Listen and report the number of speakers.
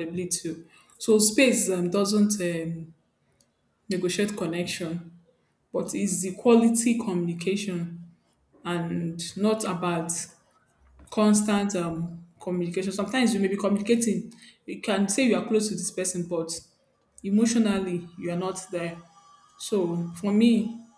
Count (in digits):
1